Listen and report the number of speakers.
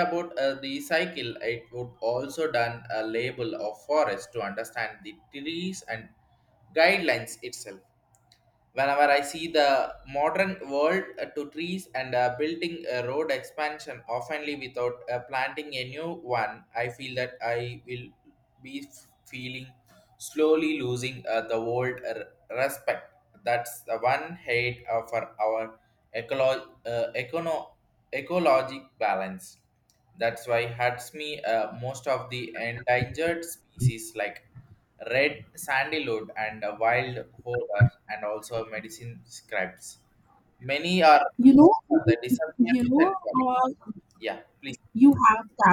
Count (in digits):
2